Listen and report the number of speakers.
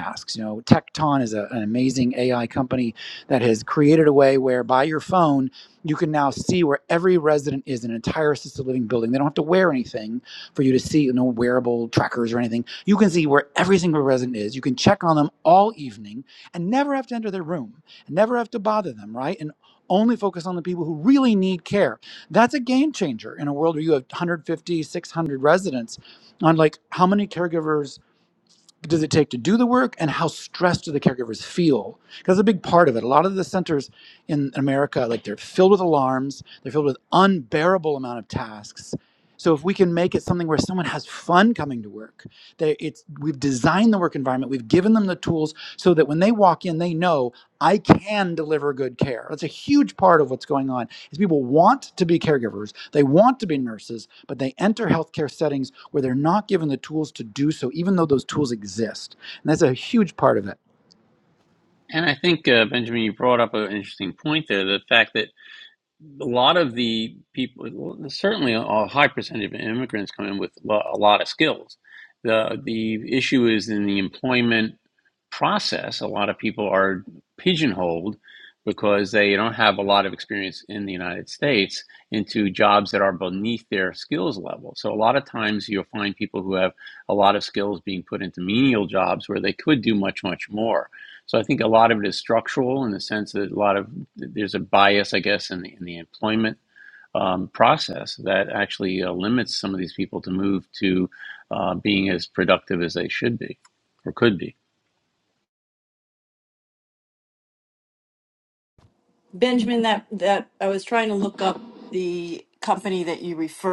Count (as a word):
three